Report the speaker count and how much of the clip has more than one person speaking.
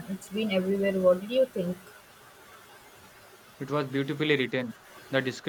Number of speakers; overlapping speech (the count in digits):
2, no overlap